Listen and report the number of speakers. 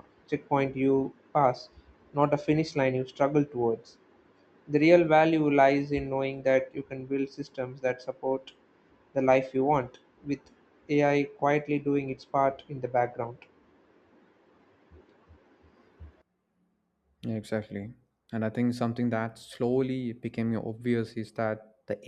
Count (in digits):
2